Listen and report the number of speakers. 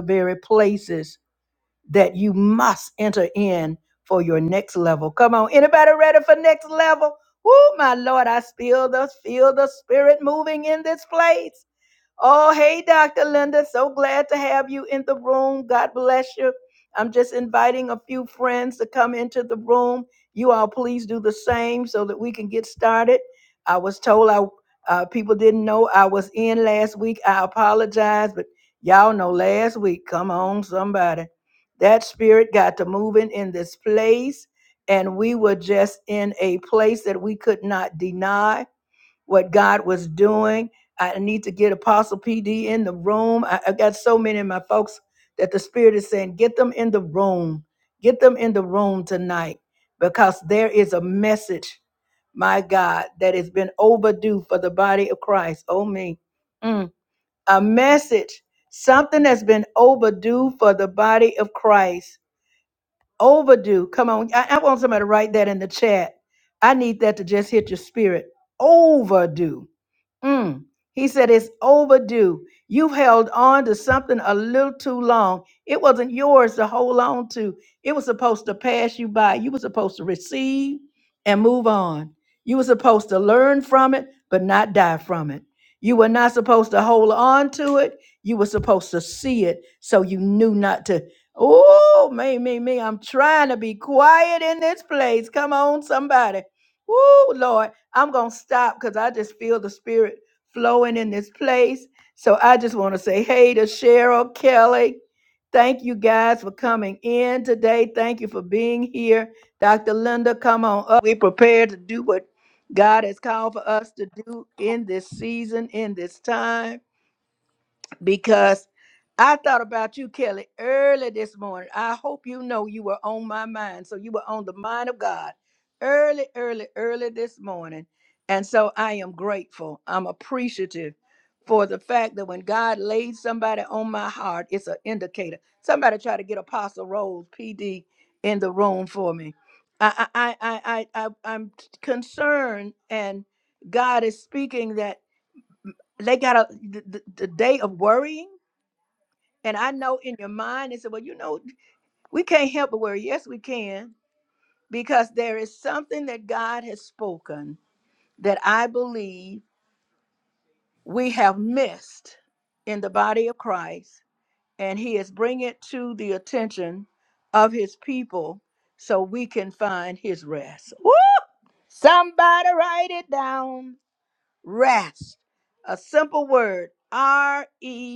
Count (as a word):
one